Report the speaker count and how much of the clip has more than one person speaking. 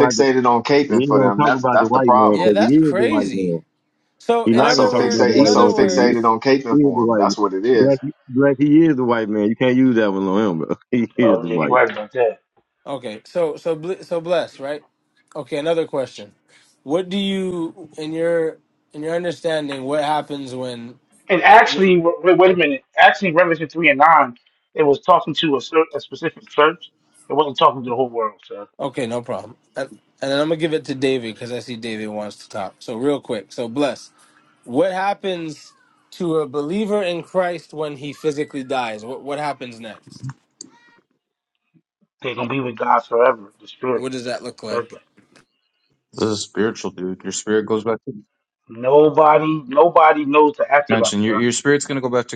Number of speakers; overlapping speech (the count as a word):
five, about 13%